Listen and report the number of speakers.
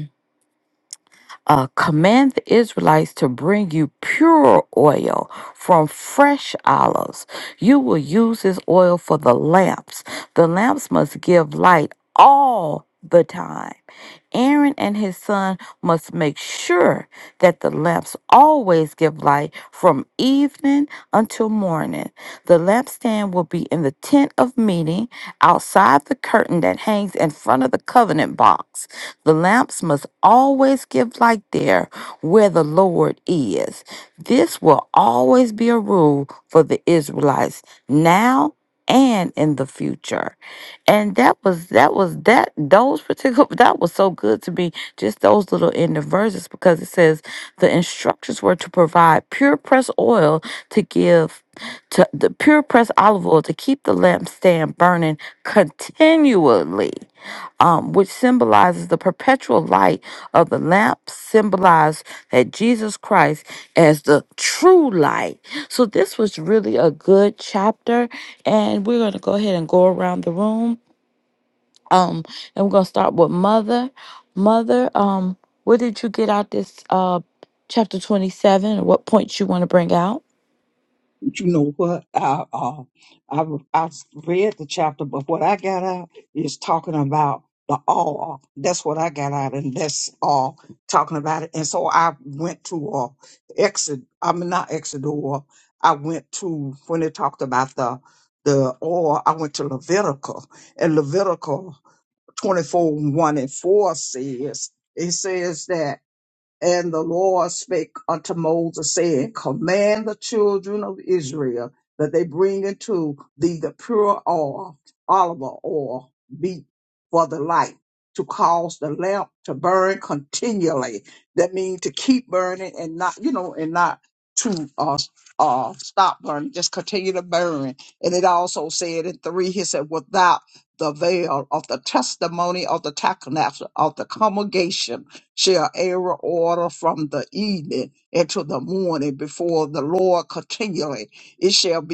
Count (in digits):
2